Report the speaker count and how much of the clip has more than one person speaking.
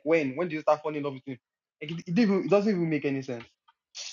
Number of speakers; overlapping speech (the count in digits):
1, no overlap